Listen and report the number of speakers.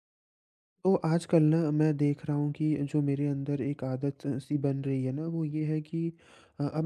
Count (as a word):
one